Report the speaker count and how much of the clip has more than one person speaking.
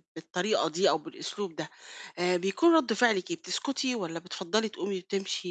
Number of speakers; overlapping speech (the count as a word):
one, no overlap